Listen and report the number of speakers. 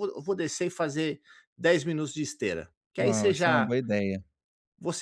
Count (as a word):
two